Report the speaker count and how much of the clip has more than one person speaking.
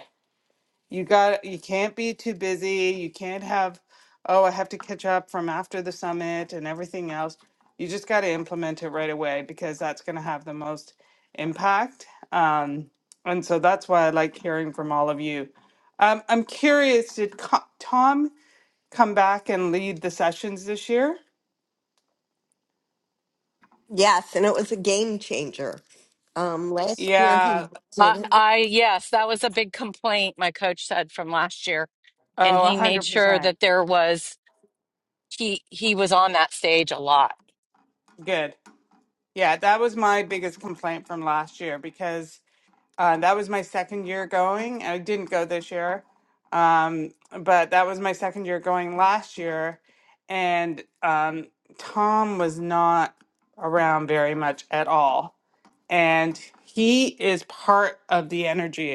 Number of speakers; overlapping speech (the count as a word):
three, about 4%